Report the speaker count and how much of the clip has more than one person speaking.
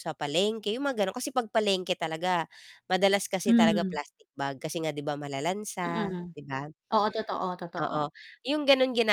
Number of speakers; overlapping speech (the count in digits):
2, about 12%